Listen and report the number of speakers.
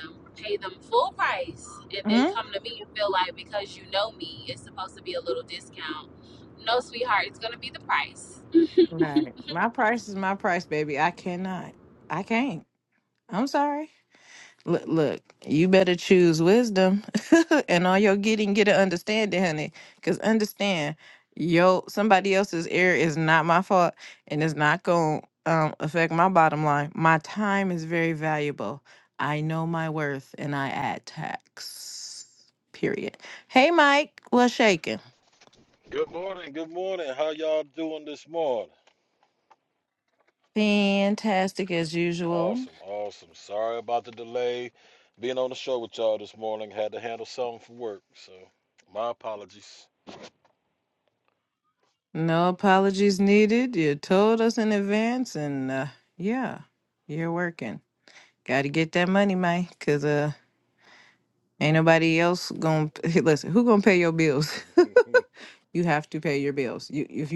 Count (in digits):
3